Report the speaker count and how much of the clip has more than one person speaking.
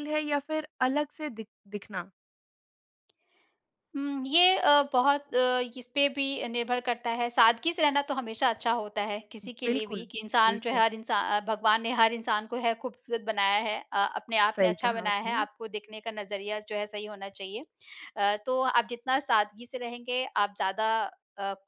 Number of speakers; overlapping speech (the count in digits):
2, about 8%